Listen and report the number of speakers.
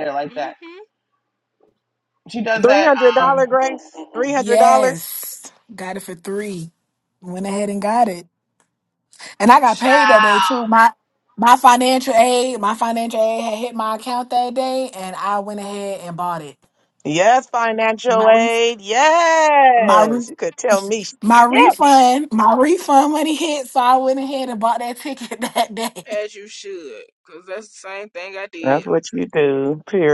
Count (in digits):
4